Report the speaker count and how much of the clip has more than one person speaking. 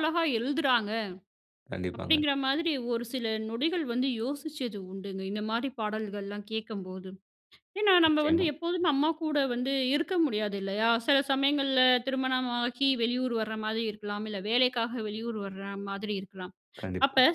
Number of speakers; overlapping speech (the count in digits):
2, about 5%